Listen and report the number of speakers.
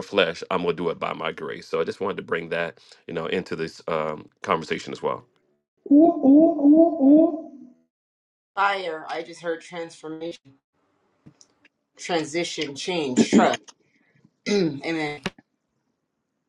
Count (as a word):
three